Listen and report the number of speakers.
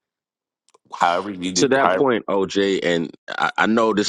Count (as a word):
two